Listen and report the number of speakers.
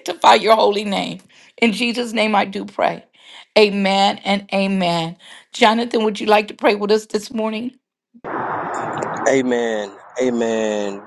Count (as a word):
two